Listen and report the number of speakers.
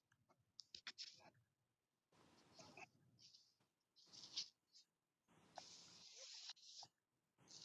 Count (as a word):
zero